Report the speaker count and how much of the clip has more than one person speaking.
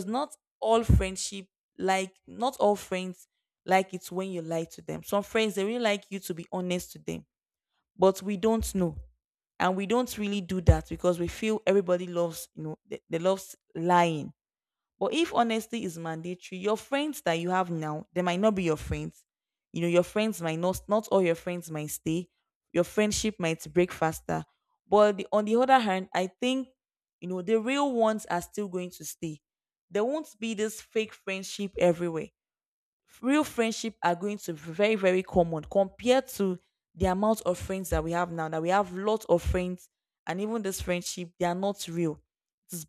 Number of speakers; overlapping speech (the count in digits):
1, no overlap